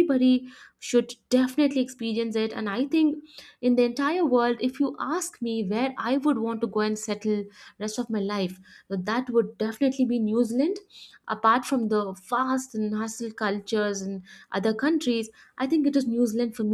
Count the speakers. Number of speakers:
one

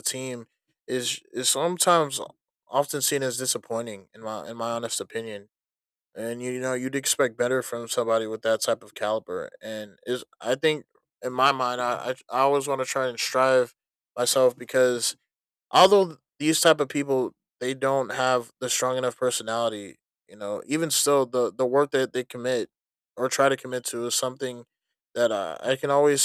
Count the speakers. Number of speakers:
one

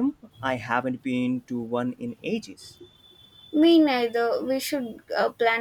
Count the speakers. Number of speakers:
two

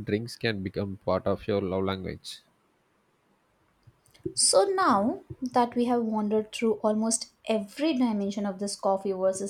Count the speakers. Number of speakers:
two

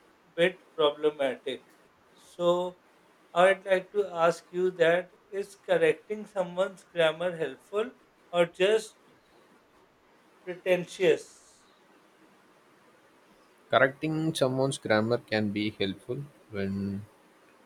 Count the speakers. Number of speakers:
two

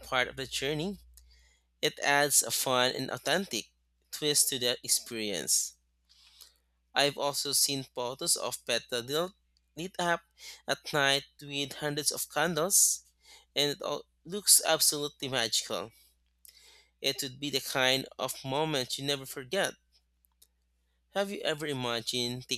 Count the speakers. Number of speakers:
one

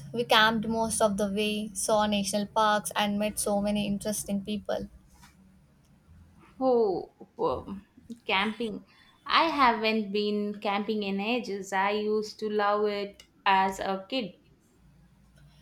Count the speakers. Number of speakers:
two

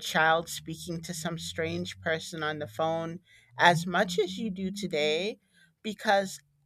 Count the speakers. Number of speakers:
one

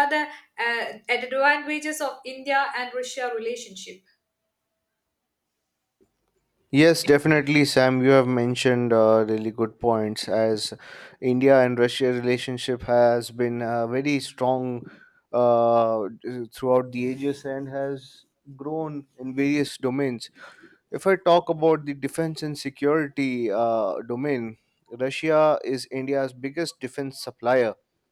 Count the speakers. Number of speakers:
two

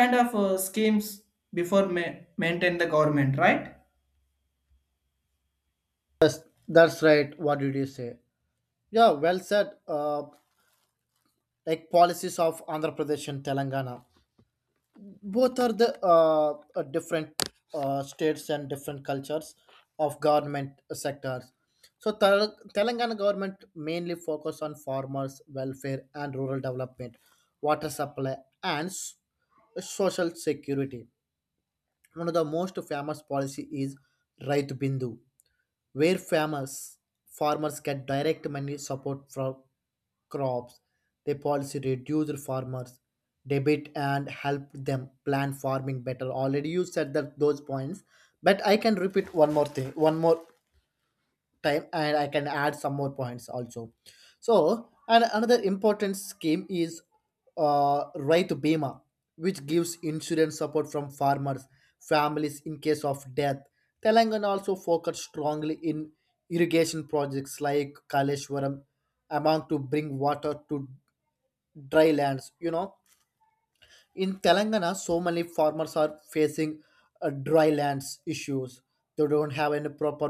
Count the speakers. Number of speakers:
two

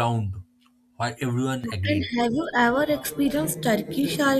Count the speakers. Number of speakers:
two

